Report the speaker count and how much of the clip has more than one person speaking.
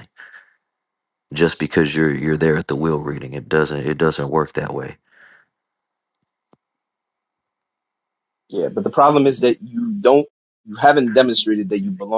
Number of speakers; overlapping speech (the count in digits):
2, no overlap